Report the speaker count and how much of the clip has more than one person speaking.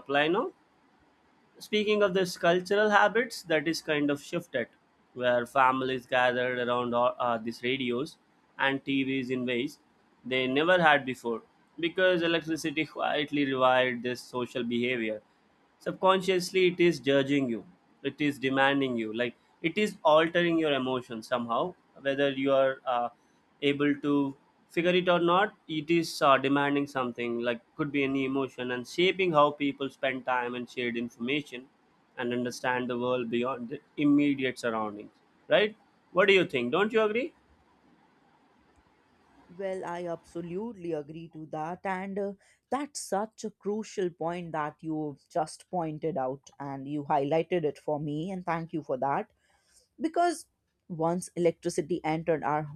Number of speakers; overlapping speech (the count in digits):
2, no overlap